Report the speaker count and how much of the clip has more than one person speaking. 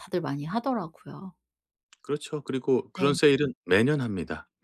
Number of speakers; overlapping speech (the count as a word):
two, about 5%